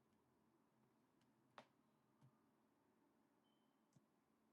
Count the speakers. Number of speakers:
zero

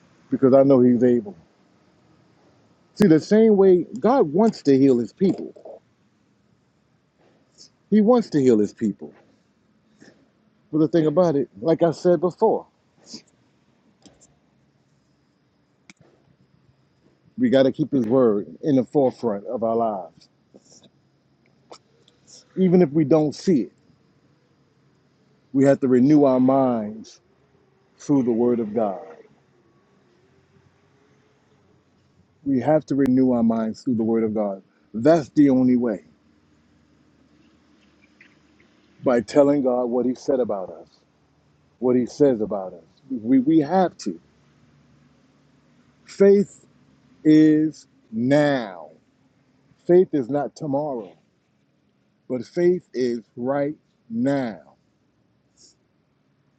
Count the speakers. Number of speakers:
one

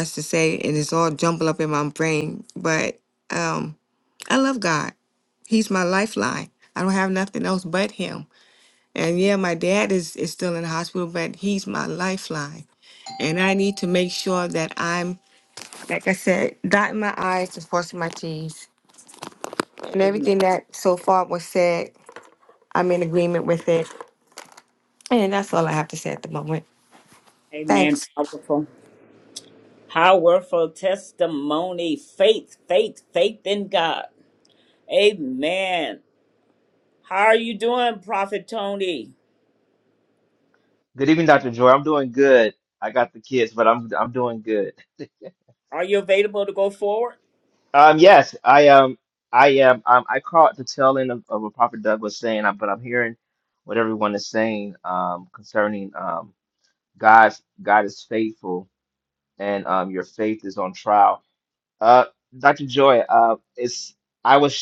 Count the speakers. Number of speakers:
three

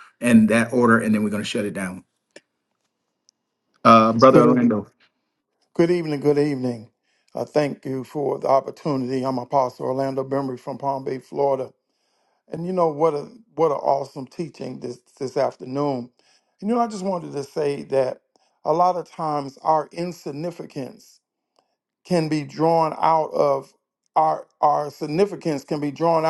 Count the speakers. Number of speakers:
two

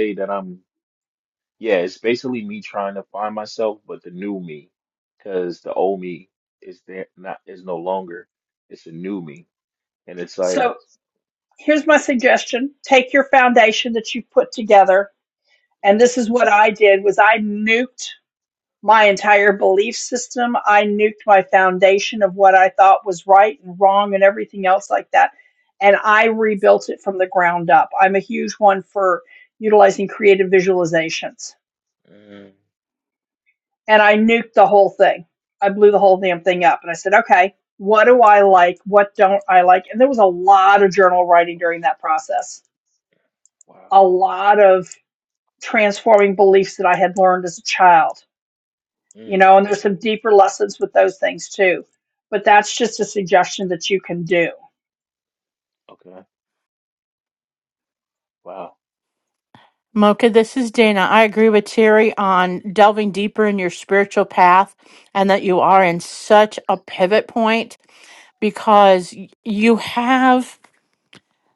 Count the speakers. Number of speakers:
three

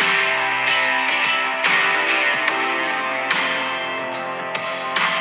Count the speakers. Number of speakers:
zero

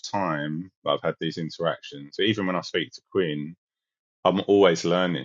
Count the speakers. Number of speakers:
one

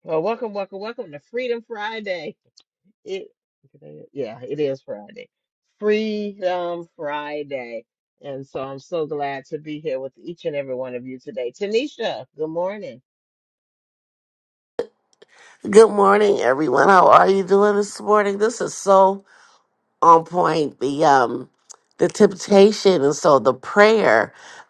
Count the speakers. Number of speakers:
two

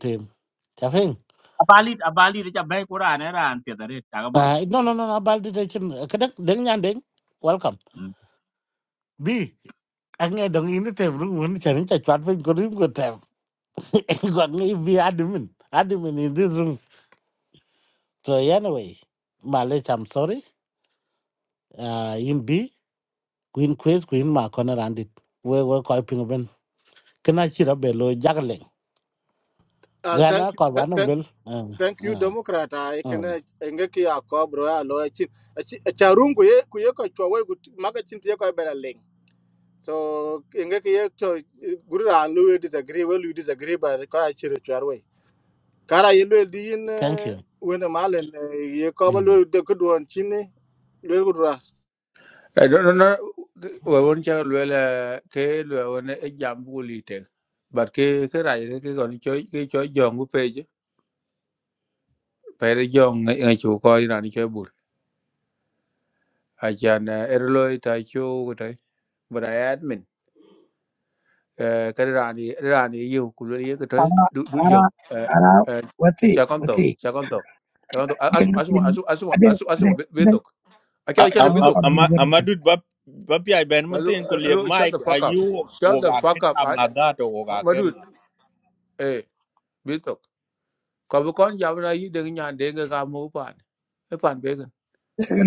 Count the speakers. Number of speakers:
six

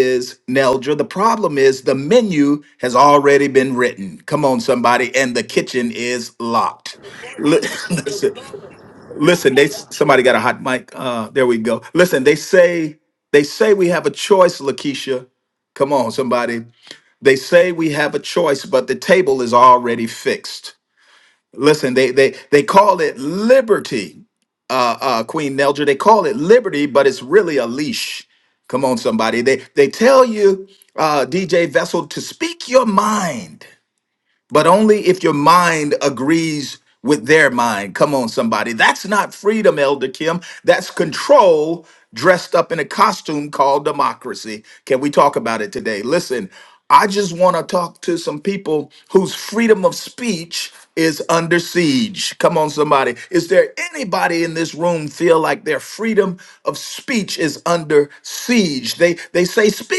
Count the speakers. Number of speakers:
one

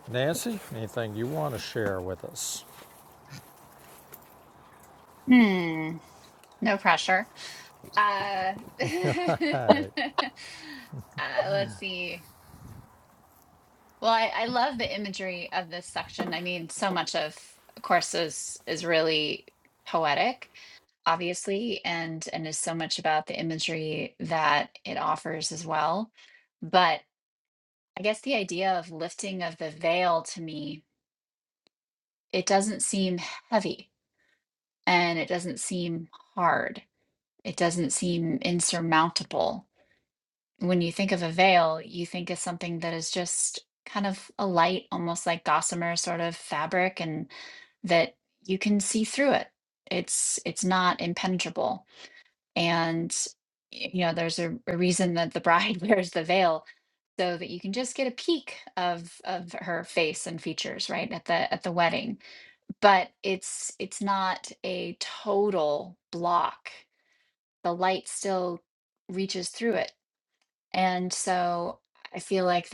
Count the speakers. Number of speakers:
two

